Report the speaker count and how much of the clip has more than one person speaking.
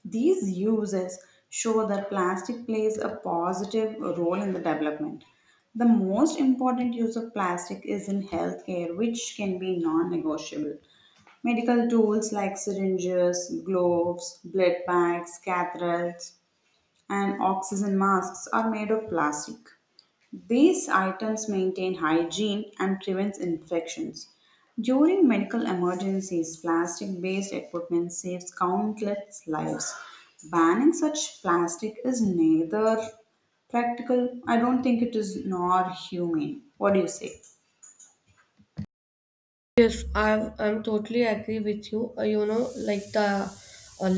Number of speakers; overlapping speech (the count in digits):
2, no overlap